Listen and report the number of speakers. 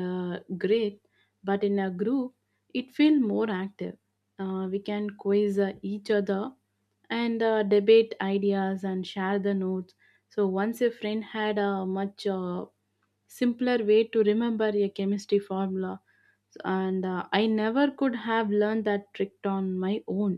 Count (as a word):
one